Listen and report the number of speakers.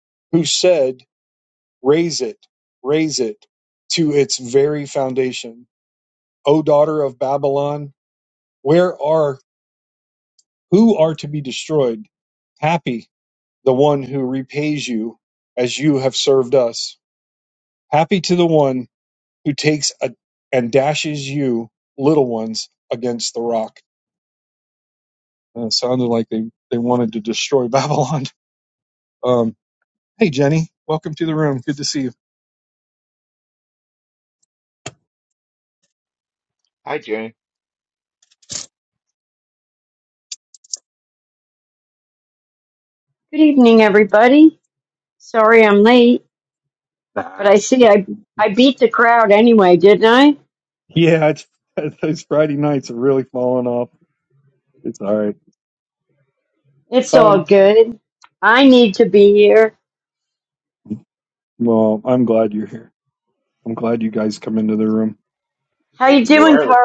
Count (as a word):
three